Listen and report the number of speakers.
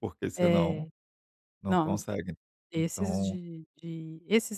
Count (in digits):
2